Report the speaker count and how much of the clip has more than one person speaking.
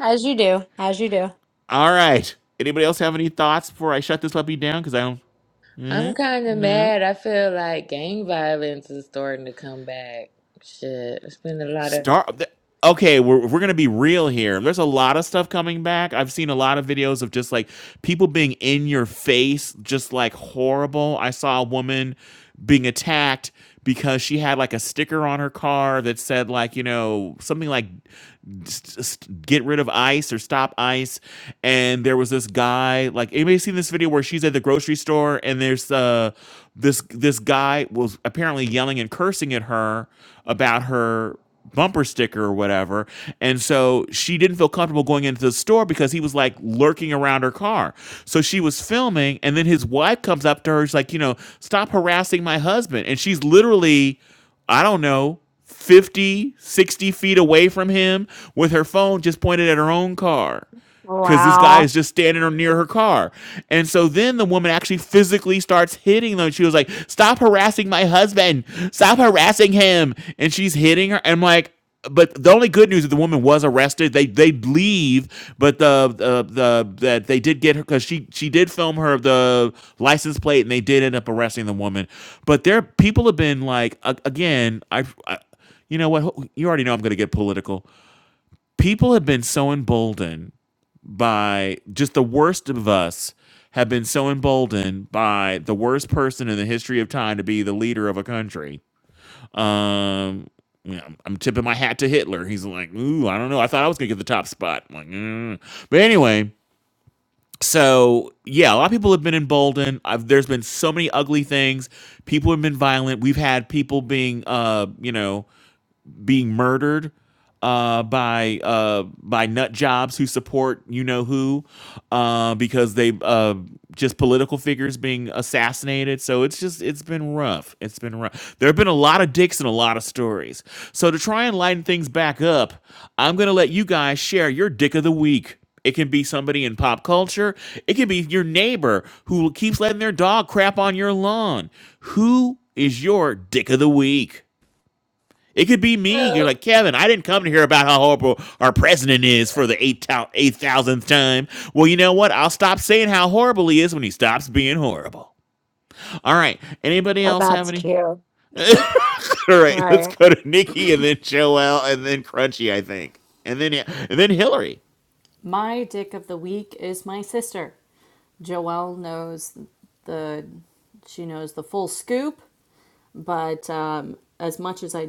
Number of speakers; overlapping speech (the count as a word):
four, about 1%